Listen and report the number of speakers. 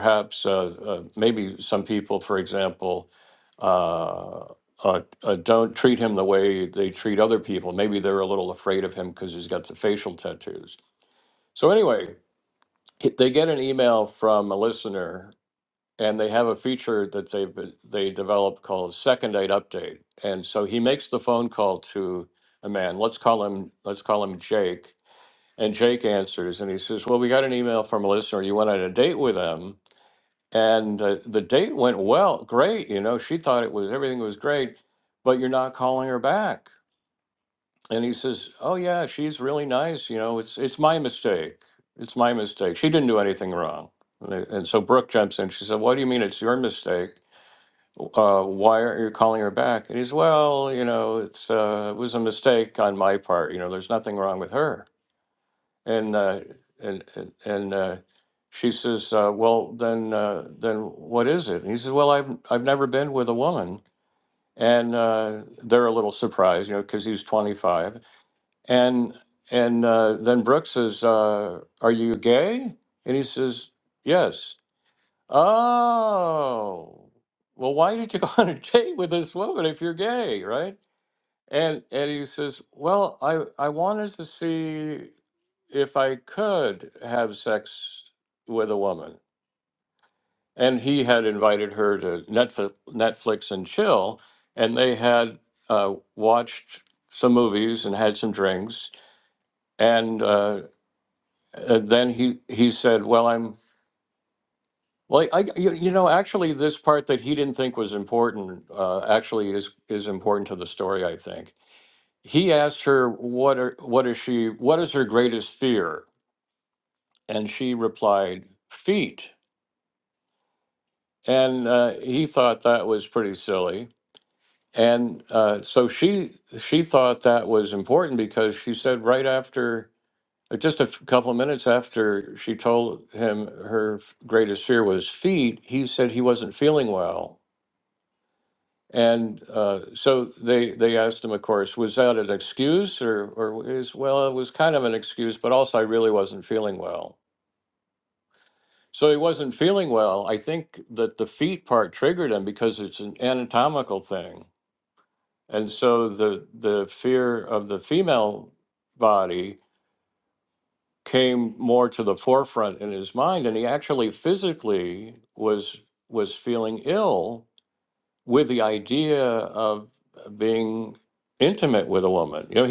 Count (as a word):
one